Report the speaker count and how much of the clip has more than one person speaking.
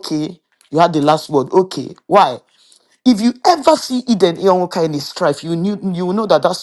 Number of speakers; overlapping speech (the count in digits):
1, no overlap